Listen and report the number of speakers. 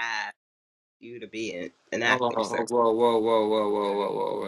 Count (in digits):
2